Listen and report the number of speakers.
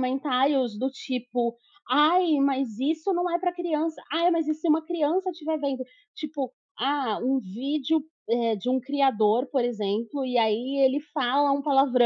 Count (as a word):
one